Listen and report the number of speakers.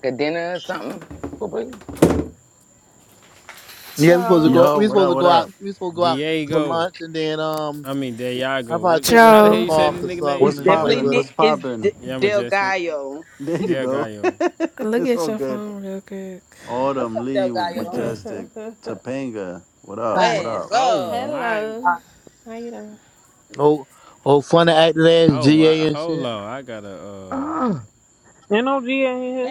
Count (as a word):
seven